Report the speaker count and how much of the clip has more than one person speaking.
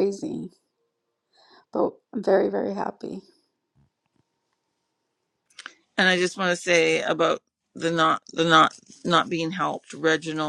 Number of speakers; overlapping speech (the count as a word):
two, no overlap